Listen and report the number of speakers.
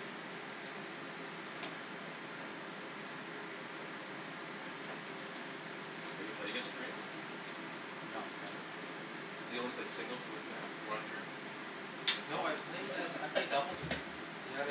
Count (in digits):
2